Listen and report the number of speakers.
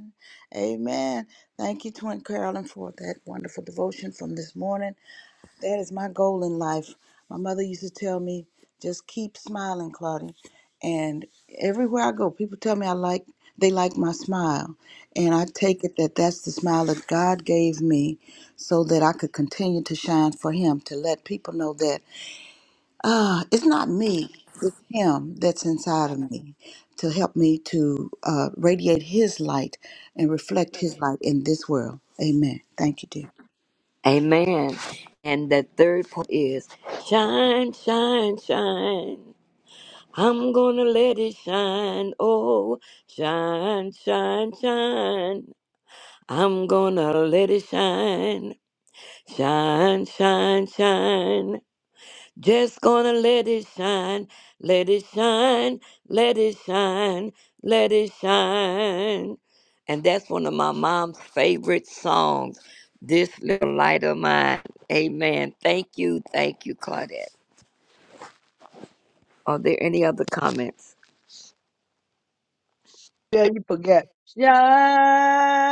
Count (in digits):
3